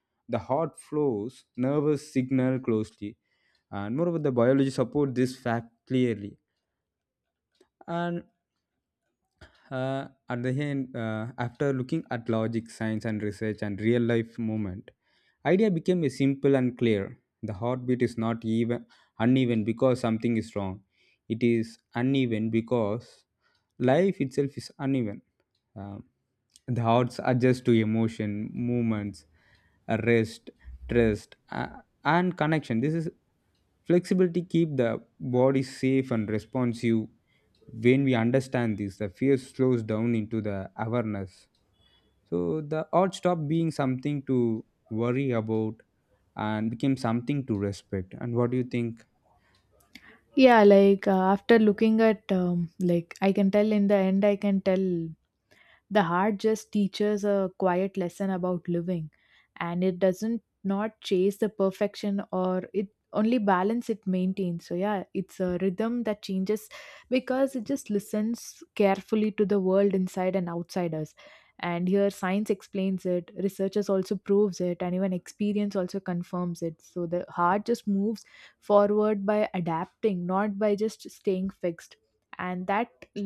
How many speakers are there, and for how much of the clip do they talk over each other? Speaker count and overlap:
2, no overlap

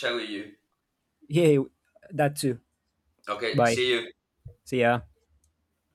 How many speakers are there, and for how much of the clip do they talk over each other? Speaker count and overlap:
2, about 4%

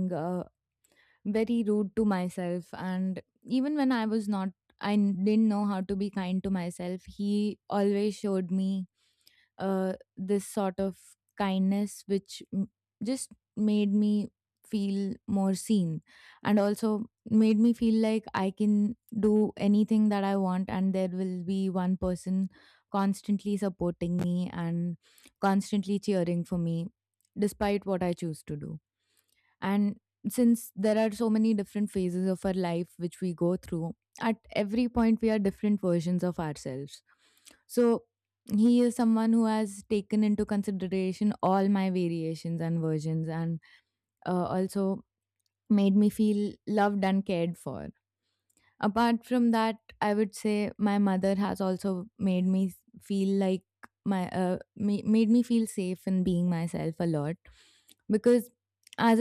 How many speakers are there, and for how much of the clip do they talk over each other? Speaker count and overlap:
1, no overlap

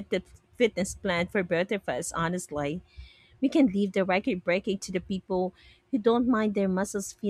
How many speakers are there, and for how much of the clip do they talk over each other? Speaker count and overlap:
1, no overlap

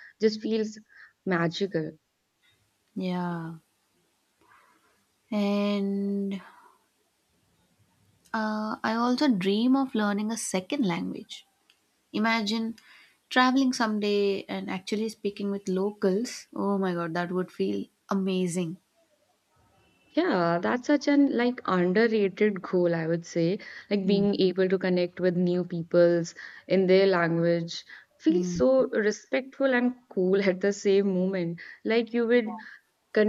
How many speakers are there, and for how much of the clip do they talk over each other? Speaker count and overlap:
2, about 2%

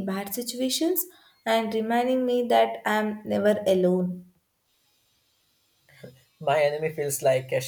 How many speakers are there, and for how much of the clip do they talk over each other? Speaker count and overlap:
2, no overlap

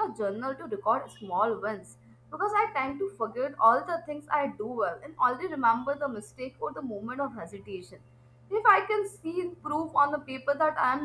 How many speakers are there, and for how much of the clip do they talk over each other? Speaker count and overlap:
1, no overlap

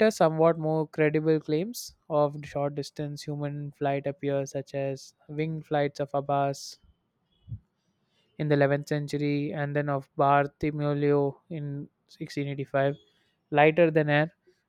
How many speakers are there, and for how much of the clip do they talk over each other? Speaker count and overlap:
1, no overlap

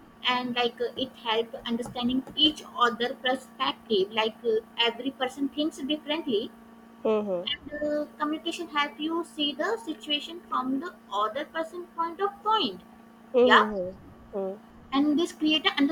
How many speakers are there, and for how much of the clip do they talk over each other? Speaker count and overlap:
2, about 2%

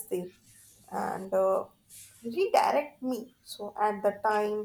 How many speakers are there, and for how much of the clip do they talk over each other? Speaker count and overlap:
1, no overlap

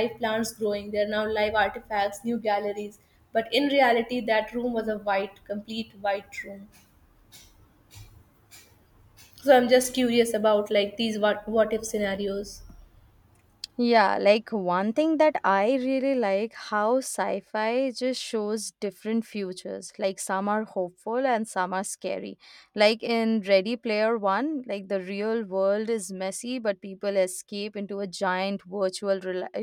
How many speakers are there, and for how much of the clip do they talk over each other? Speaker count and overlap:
2, no overlap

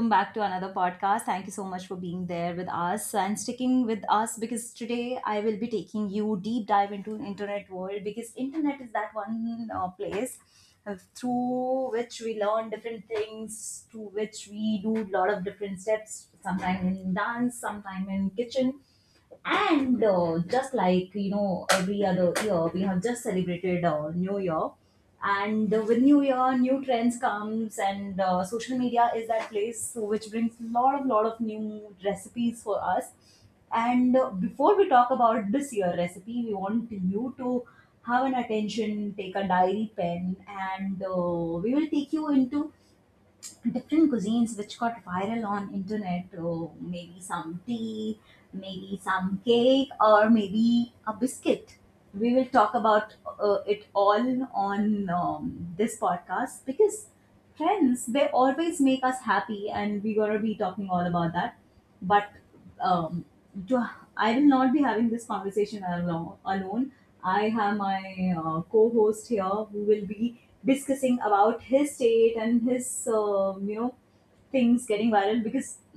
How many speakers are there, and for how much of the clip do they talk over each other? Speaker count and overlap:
1, no overlap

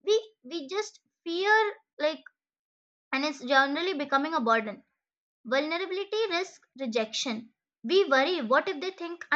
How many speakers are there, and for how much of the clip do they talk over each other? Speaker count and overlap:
1, no overlap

